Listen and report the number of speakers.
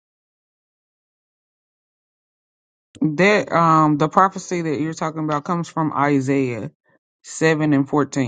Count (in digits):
1